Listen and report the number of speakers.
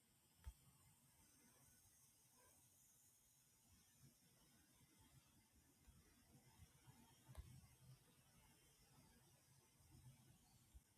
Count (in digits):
0